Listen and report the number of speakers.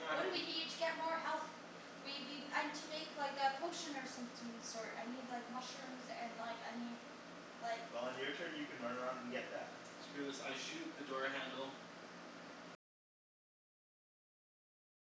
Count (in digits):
3